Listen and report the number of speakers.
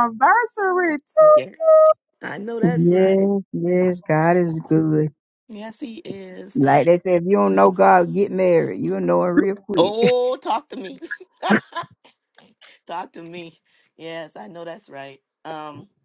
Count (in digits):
3